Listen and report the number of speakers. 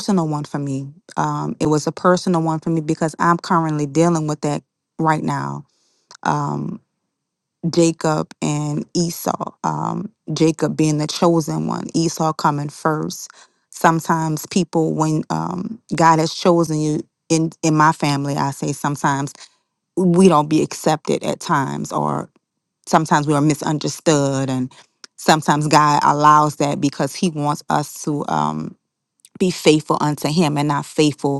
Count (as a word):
one